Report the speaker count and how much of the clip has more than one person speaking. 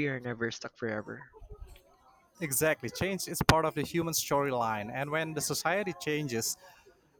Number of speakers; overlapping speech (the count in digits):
2, no overlap